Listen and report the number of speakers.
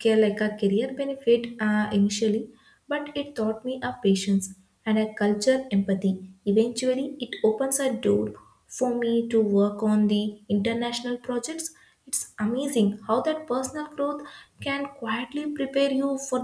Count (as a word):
one